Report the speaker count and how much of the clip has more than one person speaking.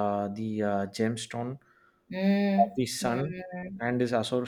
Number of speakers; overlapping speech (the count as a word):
two, about 9%